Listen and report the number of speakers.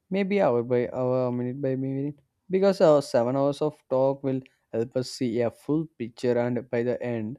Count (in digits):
1